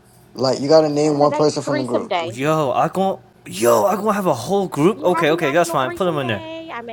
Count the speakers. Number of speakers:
three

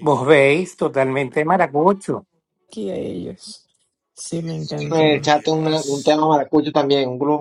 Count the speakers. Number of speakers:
three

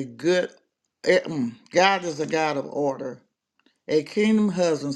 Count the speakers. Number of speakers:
one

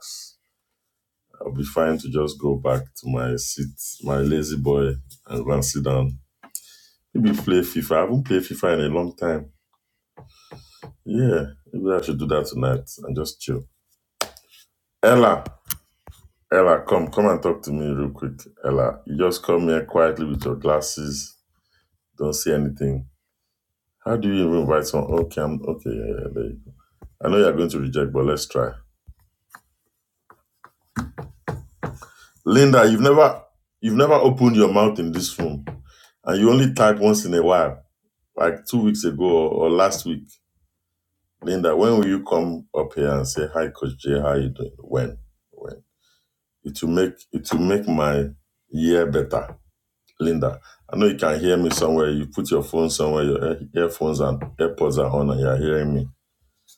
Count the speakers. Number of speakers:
one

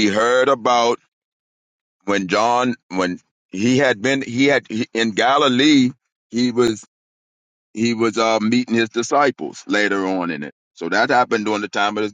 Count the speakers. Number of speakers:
one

